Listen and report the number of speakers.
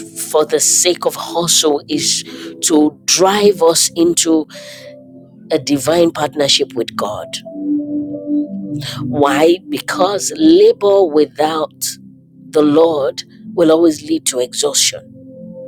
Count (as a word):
one